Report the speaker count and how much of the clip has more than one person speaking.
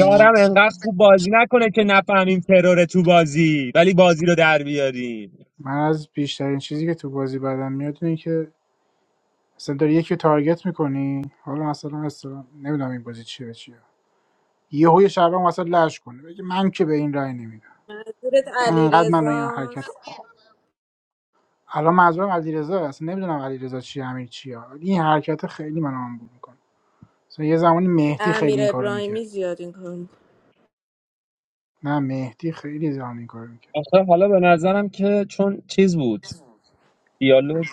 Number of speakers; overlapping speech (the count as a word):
three, about 7%